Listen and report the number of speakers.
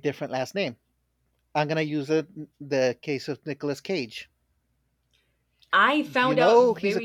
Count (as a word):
two